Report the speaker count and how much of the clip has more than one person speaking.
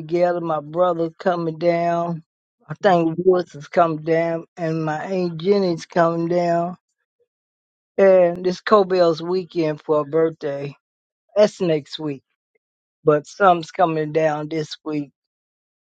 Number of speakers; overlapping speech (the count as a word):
one, no overlap